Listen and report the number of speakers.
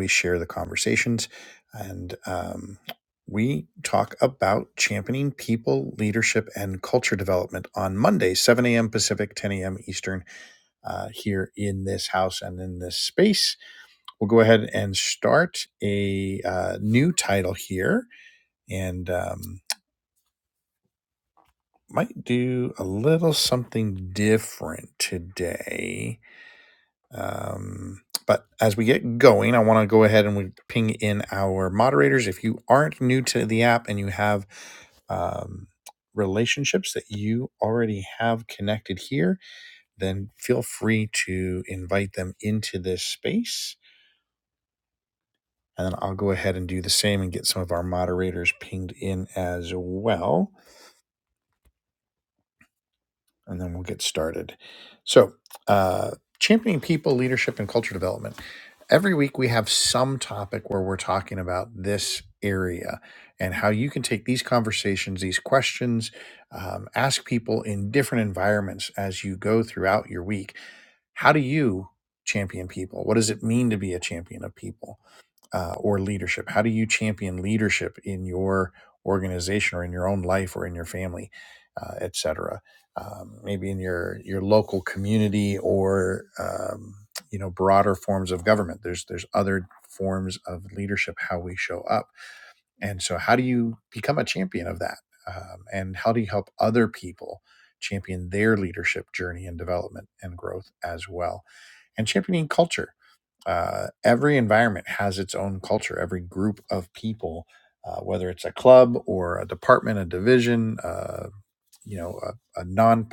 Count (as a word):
one